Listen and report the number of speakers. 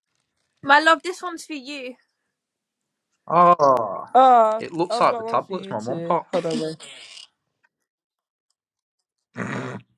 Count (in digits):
3